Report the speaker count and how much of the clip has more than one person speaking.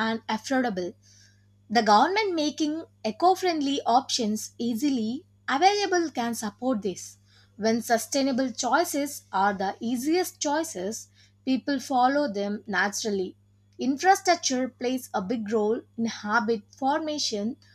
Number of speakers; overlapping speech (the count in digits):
1, no overlap